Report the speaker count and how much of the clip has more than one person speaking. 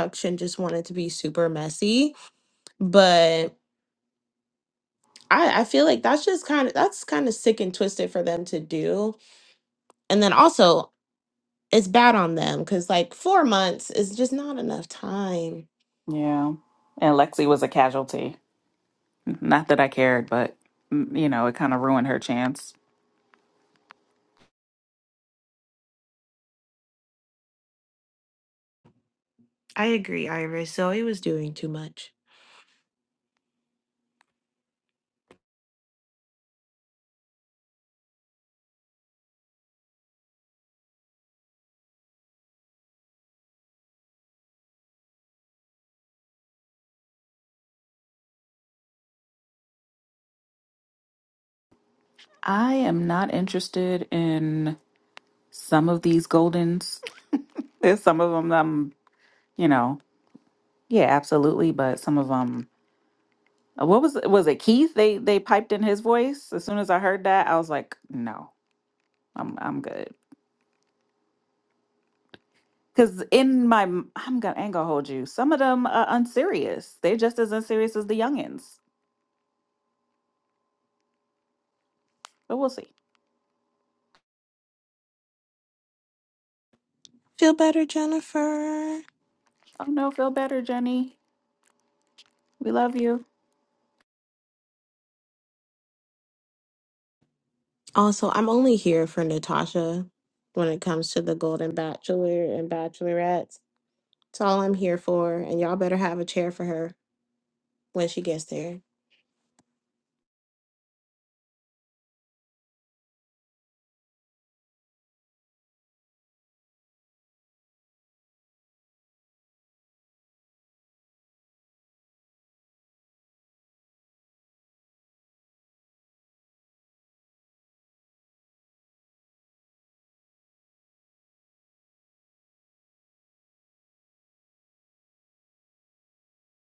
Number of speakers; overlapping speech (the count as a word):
two, no overlap